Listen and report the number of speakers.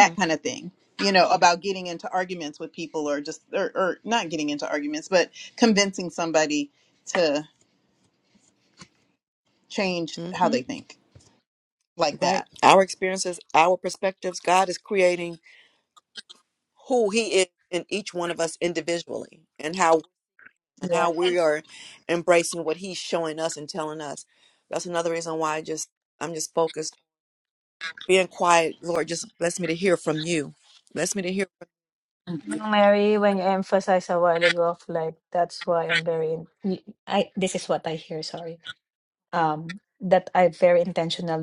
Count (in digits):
3